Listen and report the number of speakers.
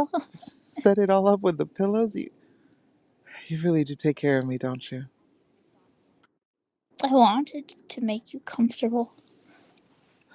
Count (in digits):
2